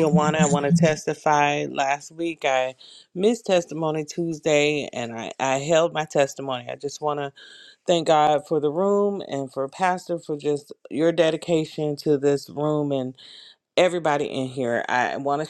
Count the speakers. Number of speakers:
one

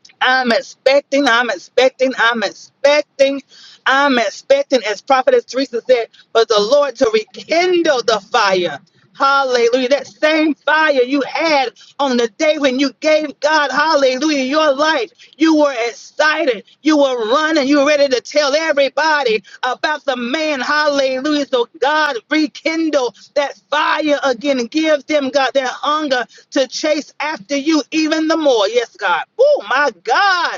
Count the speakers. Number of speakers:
one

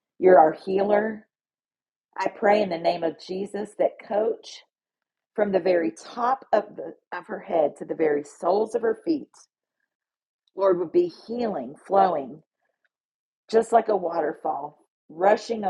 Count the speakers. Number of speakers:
one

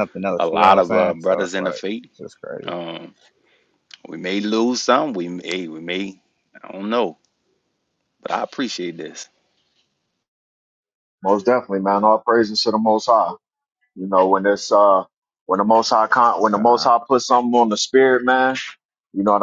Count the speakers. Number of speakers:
three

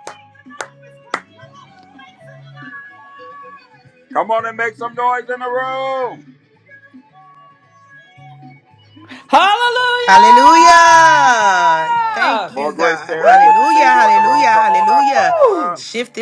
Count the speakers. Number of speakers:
three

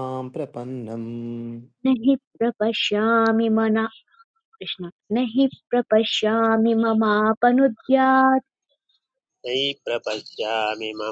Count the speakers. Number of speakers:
three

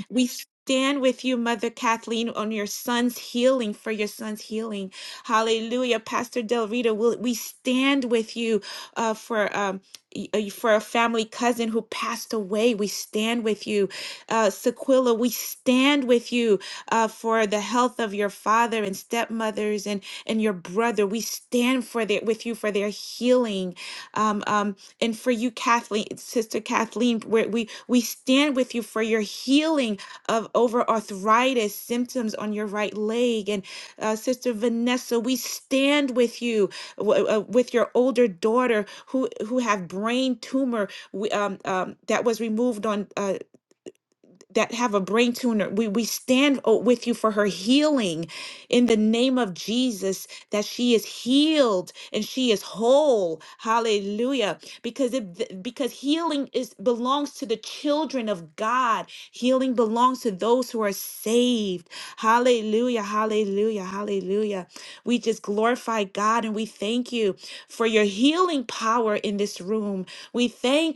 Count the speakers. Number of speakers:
one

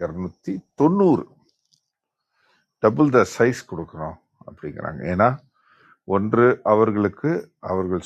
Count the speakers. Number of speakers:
one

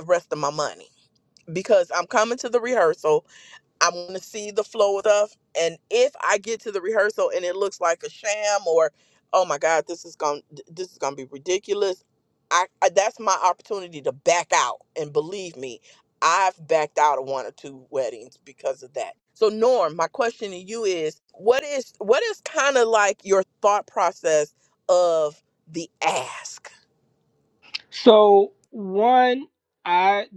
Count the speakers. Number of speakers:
two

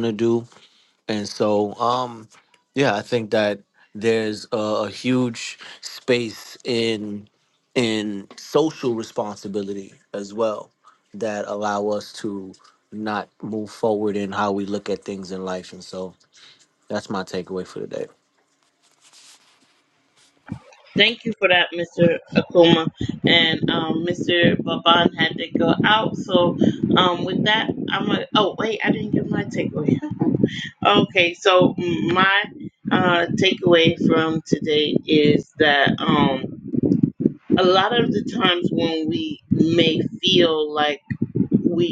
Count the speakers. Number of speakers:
two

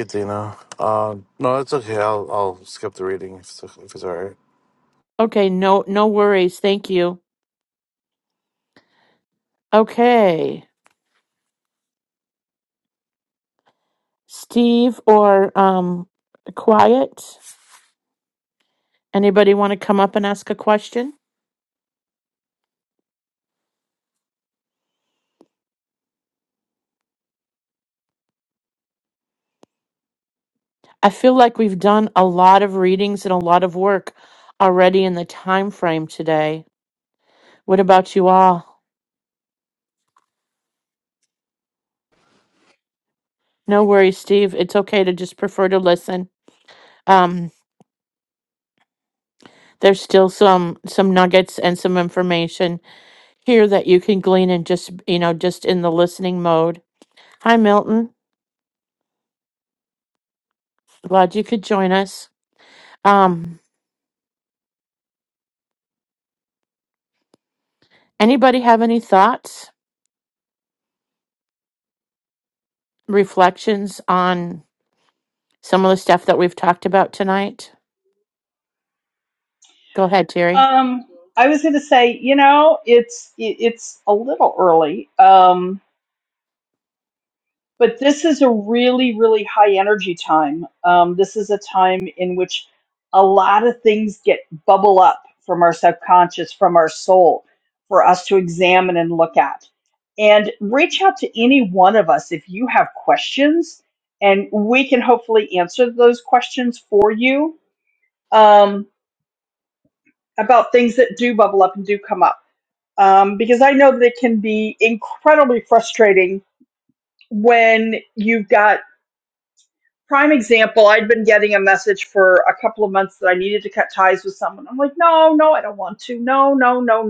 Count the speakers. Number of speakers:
three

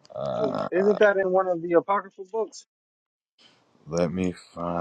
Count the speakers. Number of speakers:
two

